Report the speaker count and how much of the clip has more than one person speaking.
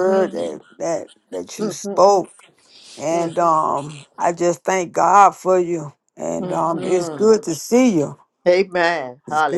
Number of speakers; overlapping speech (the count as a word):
two, about 23%